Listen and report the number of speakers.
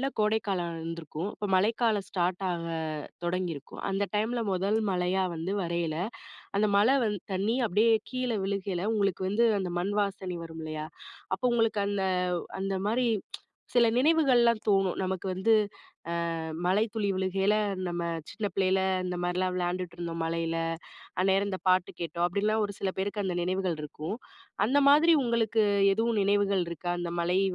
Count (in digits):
1